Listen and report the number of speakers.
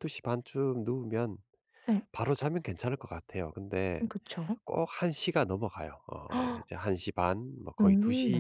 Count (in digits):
2